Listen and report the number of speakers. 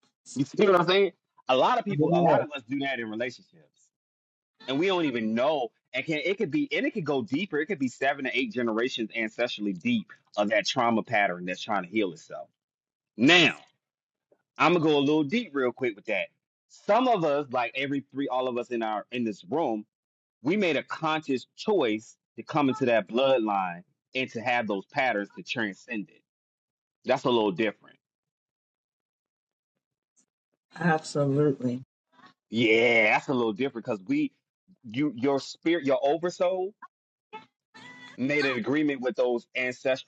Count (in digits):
2